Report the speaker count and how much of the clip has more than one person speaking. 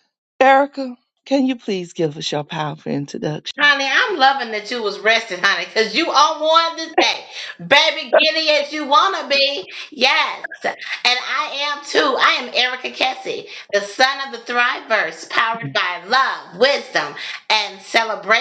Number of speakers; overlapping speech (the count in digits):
2, no overlap